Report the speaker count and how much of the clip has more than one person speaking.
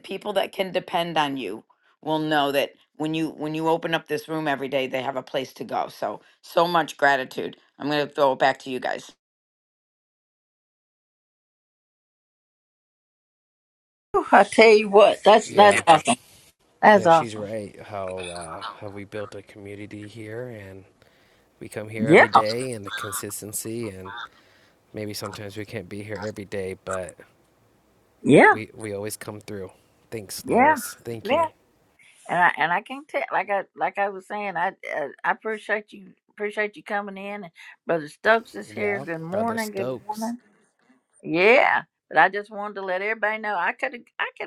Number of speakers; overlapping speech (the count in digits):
3, about 8%